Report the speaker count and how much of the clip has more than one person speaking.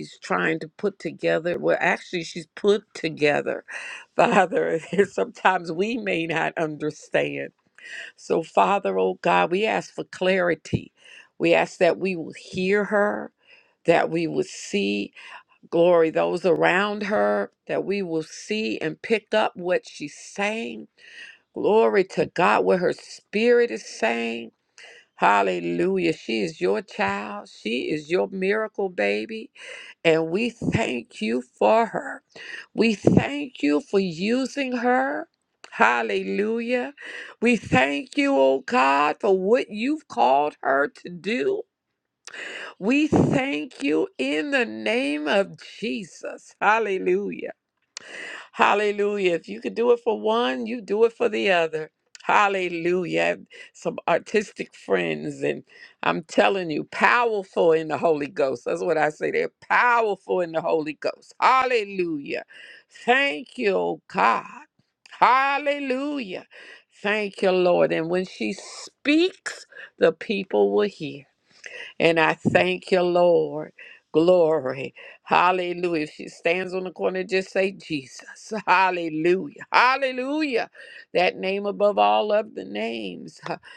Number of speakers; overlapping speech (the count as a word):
one, no overlap